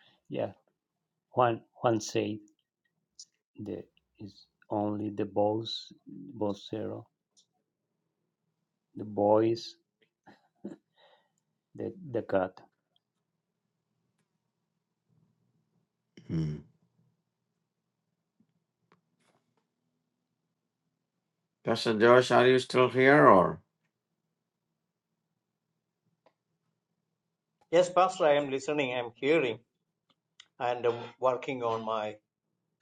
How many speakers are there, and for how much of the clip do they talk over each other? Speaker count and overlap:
3, no overlap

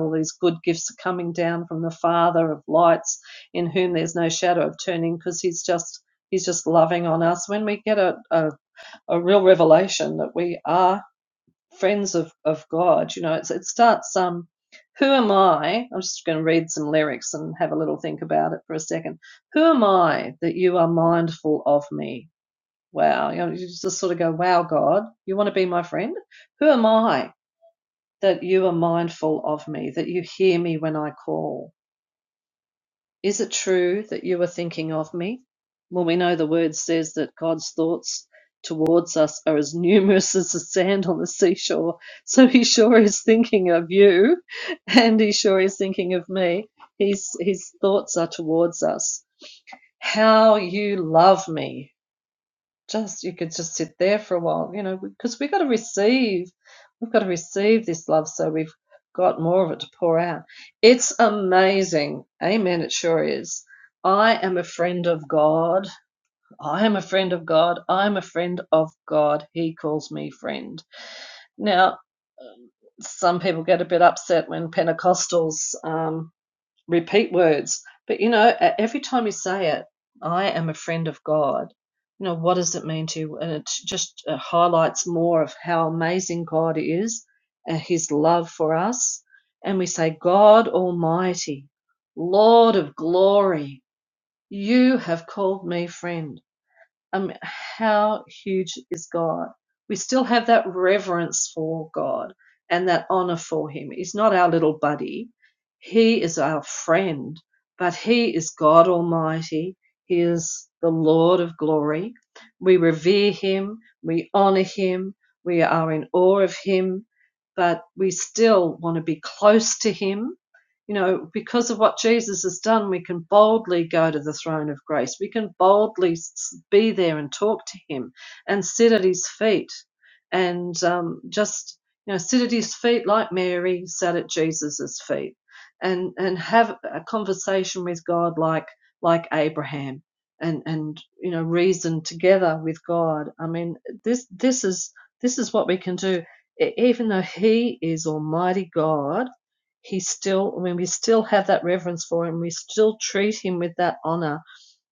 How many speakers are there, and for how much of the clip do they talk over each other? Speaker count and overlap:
1, no overlap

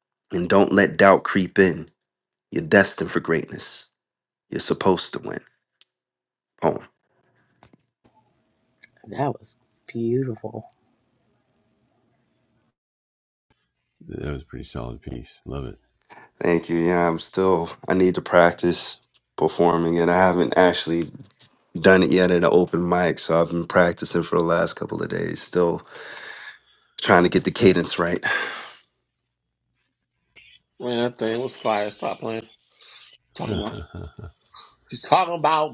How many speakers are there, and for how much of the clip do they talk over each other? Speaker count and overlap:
4, no overlap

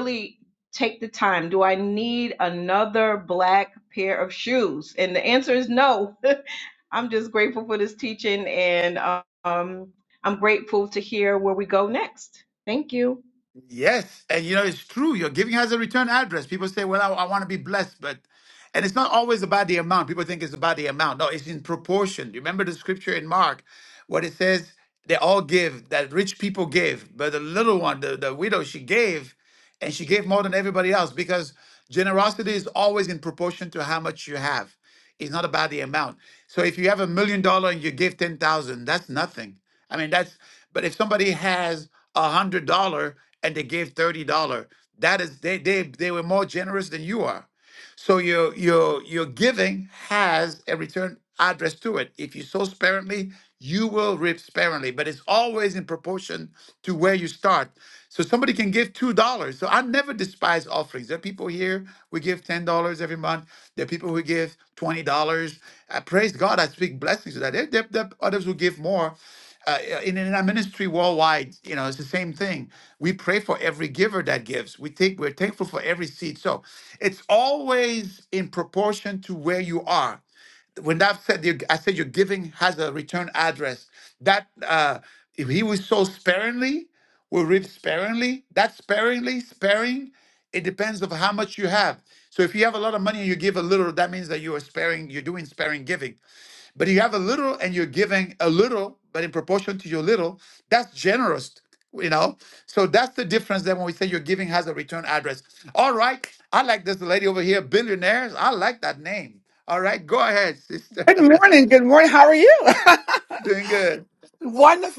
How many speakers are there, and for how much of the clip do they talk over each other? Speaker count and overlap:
3, no overlap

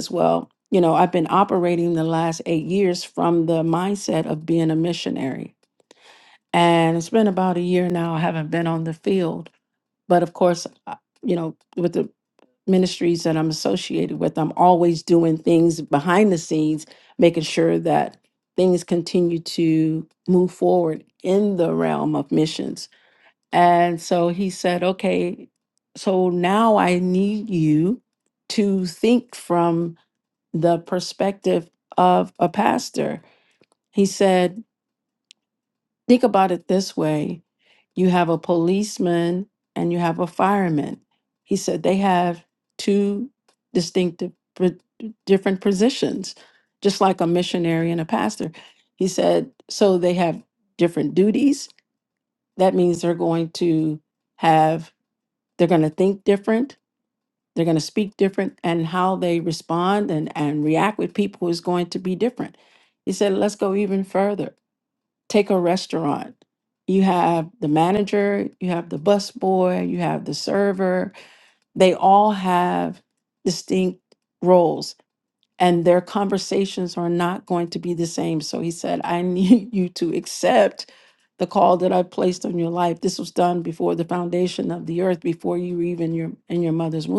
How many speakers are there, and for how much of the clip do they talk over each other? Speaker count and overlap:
1, no overlap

